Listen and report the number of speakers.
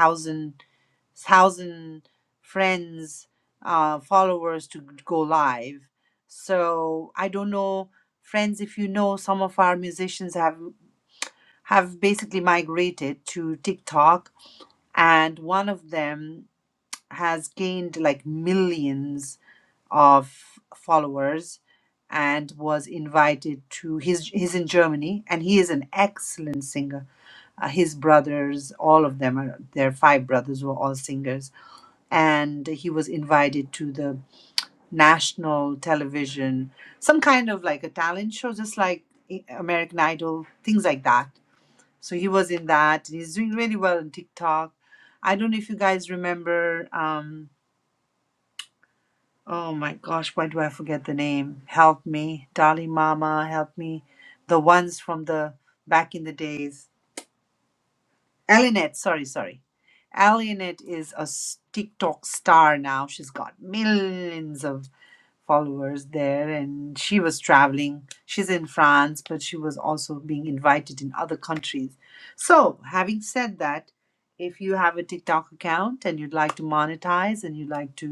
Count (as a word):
one